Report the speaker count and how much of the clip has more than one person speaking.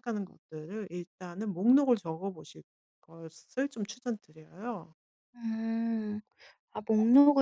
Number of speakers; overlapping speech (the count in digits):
2, no overlap